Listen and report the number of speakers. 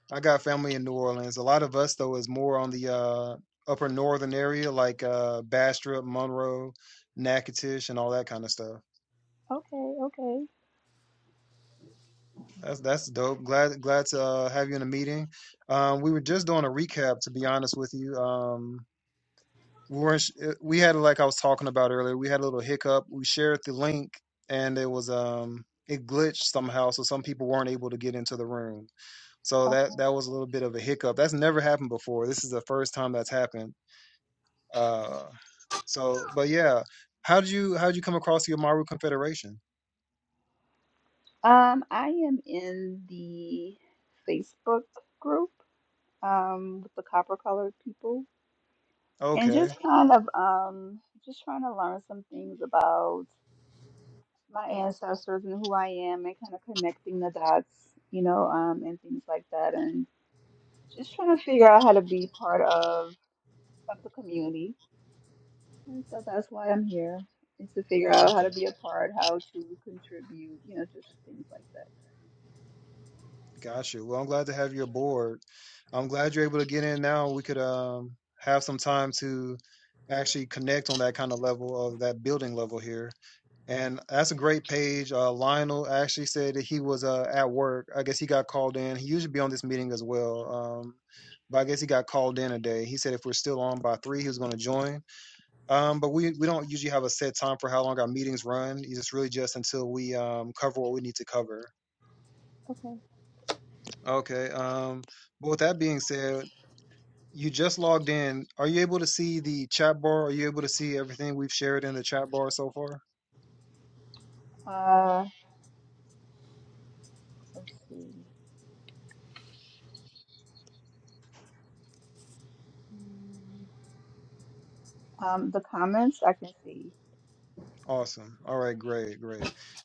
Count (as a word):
two